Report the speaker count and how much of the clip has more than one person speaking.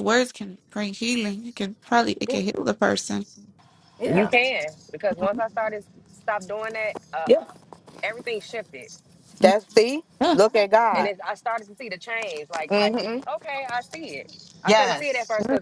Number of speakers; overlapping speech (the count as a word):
three, about 10%